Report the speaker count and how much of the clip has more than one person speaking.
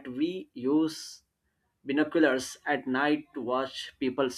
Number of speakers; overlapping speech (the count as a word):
one, no overlap